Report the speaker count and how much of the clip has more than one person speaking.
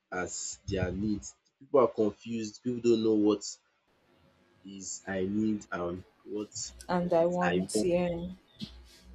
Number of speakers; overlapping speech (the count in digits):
2, about 7%